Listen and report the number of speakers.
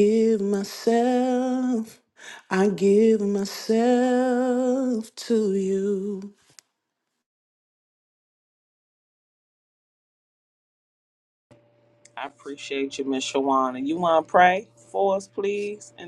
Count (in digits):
2